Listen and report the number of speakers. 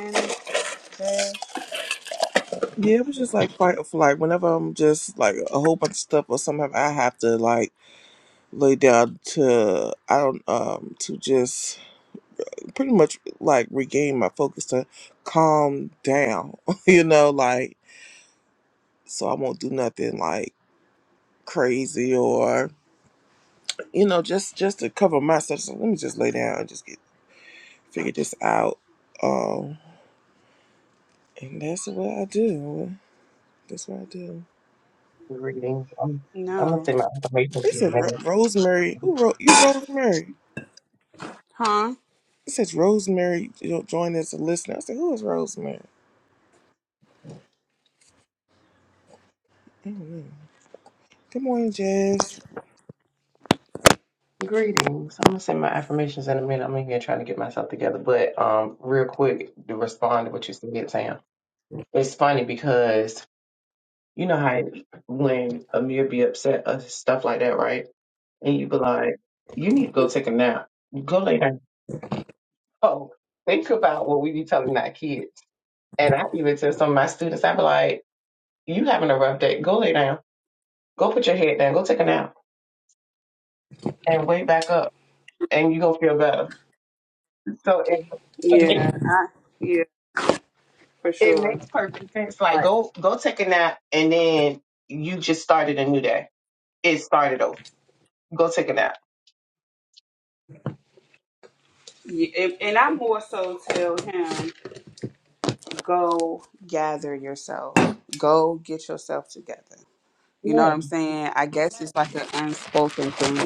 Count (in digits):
3